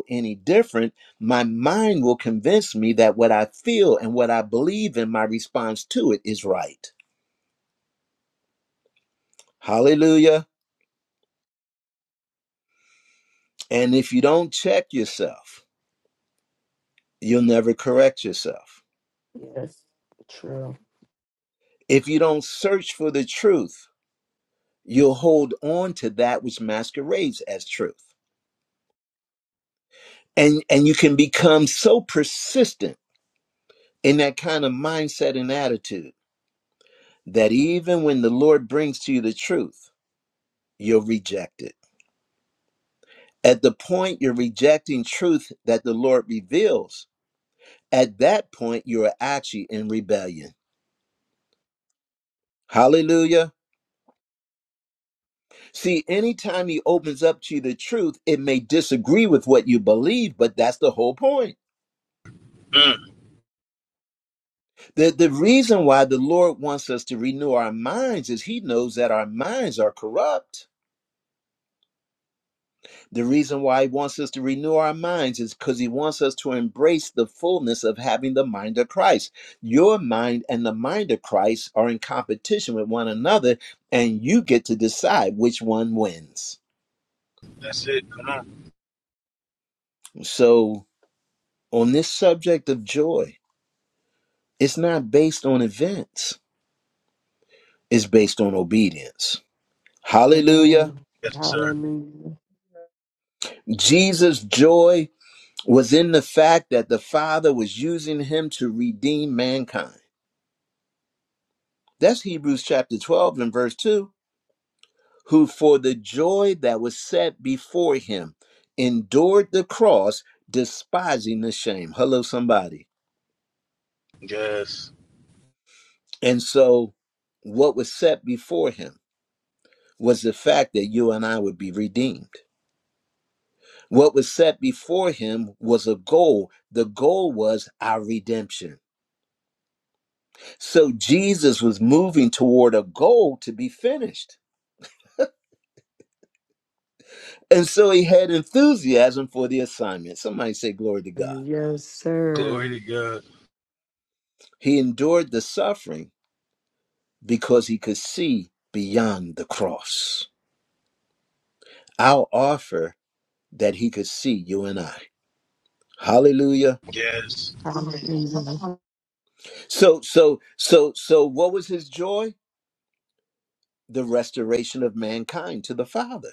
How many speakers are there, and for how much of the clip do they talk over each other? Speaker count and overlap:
4, about 1%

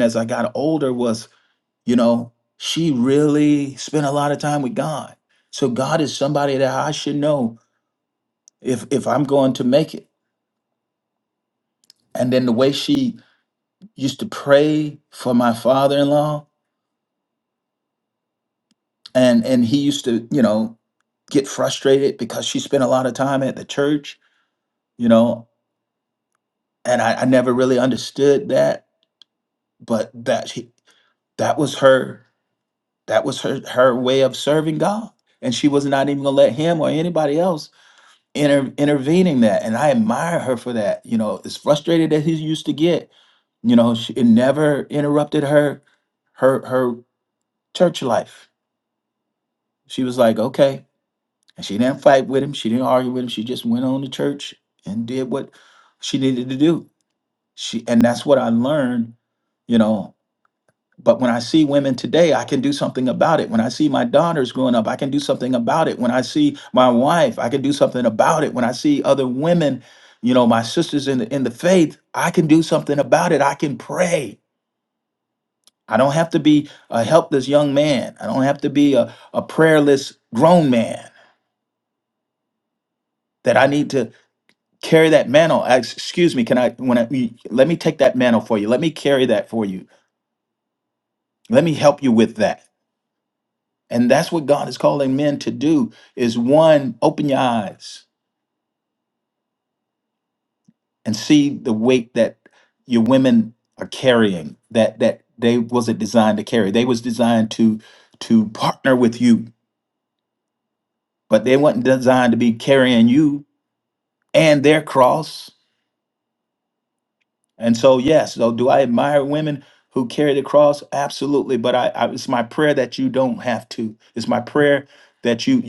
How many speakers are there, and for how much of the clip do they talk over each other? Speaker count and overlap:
1, no overlap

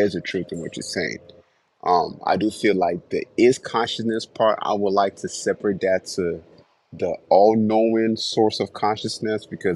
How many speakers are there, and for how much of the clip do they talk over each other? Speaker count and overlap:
1, no overlap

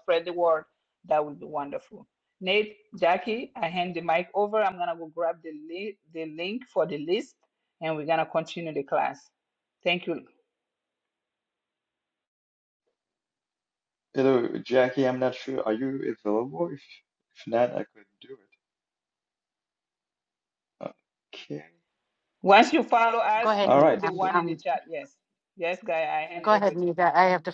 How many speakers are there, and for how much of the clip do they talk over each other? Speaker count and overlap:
3, about 6%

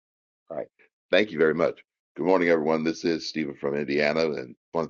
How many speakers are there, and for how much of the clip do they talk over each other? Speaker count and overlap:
1, no overlap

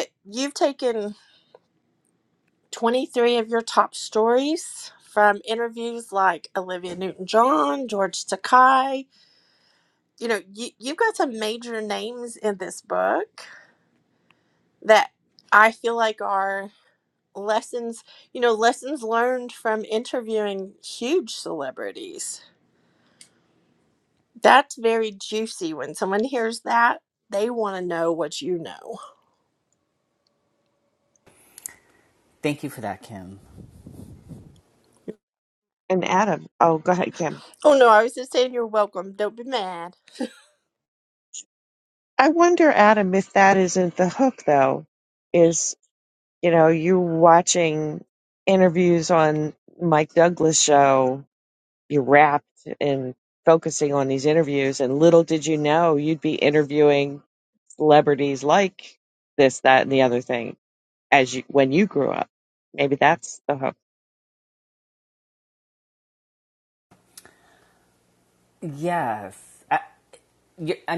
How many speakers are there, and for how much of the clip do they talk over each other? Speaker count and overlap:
3, no overlap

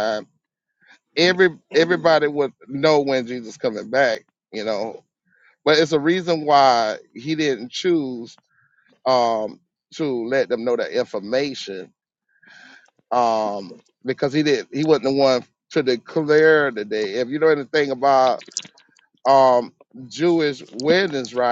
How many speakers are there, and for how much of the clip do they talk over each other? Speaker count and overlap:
1, no overlap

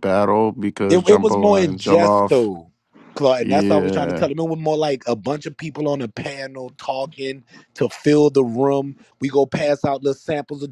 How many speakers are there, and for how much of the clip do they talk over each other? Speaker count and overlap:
2, about 21%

